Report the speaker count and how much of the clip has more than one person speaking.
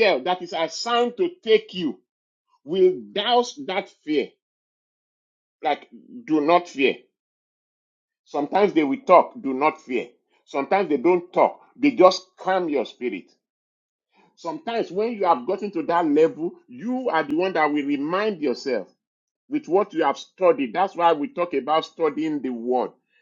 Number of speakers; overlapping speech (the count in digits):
1, no overlap